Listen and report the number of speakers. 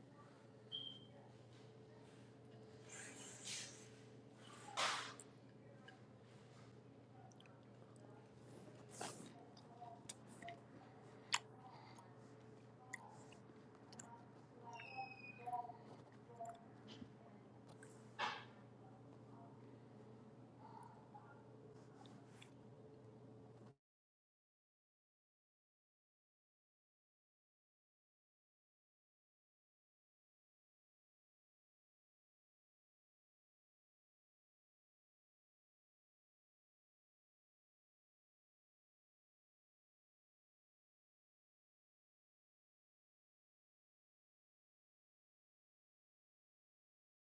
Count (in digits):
0